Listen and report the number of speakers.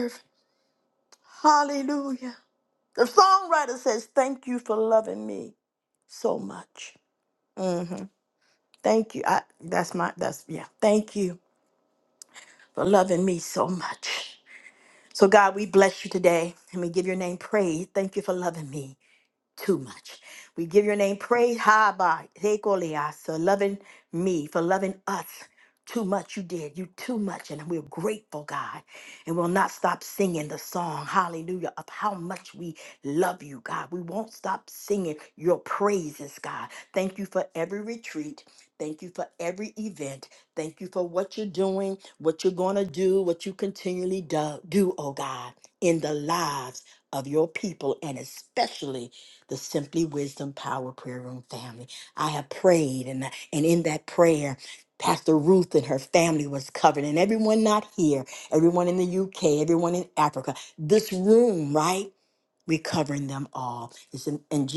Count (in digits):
1